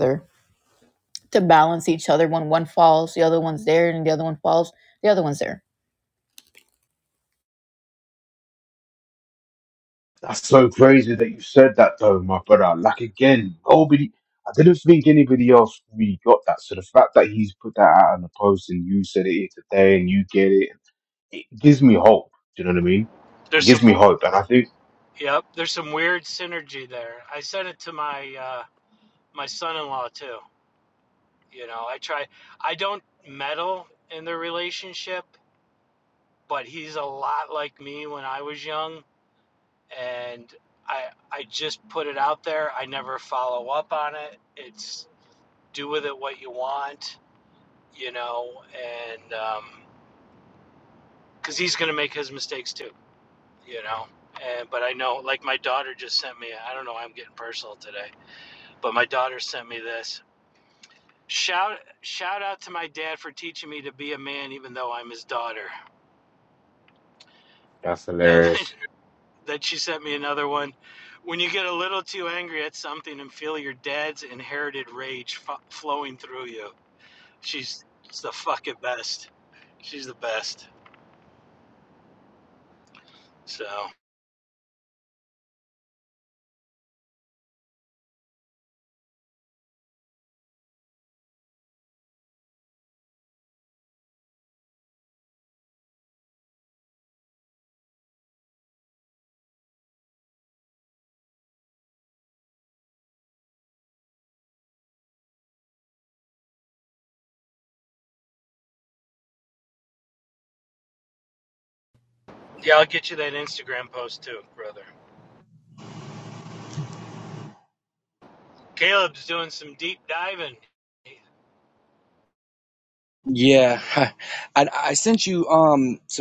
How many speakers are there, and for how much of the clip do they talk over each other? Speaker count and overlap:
4, under 1%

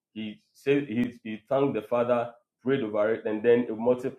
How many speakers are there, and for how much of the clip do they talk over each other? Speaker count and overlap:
1, no overlap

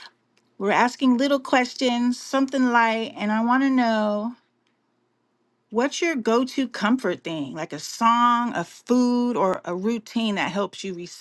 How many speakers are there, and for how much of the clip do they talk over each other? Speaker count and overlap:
1, no overlap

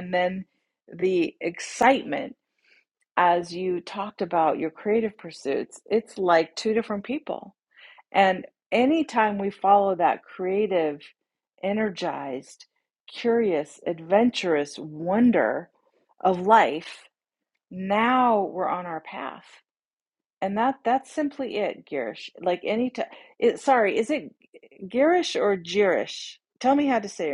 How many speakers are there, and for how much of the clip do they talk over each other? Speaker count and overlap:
1, no overlap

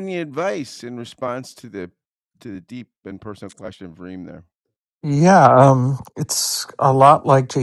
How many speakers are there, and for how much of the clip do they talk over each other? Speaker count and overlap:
2, no overlap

